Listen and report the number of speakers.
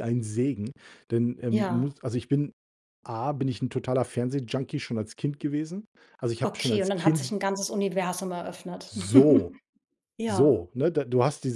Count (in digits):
2